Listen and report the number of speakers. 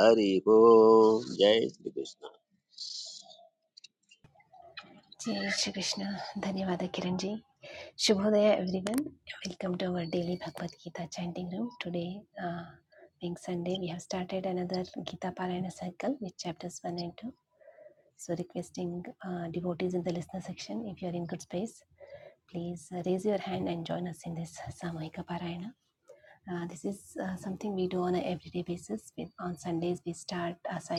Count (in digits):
2